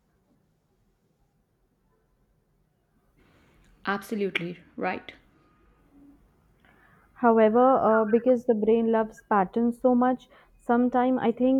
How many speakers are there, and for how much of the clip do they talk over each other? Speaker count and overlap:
2, no overlap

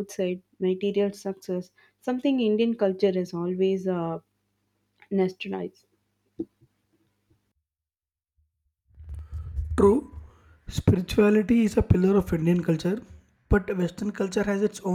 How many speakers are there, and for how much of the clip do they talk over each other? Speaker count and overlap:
2, no overlap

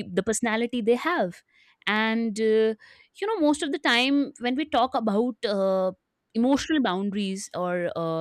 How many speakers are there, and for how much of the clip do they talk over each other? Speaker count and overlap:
1, no overlap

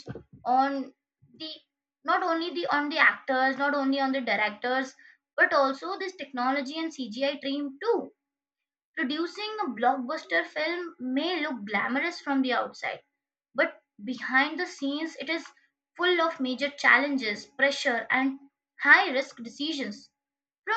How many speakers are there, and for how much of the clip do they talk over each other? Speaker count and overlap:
1, no overlap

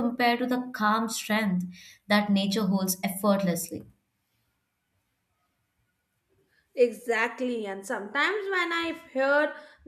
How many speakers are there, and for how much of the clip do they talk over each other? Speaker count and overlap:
2, no overlap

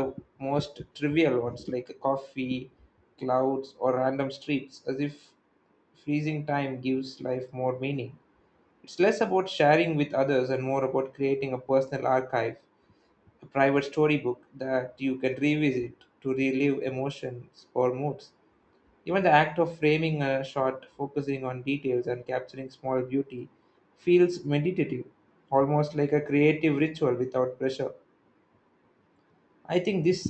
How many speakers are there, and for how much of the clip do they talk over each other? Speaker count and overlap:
1, no overlap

